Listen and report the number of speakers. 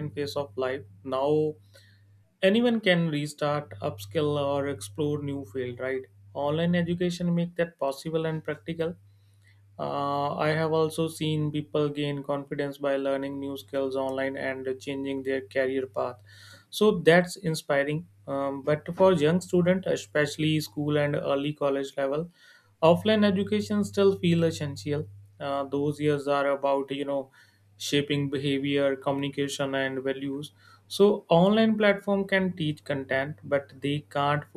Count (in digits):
1